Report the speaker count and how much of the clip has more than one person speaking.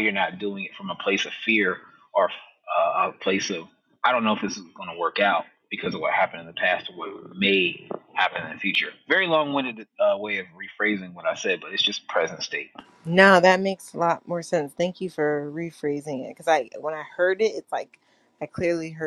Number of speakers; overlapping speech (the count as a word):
two, no overlap